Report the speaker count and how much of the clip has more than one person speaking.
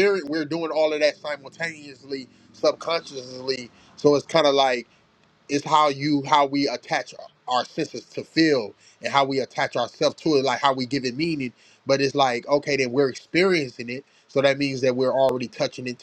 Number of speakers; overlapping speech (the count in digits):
1, no overlap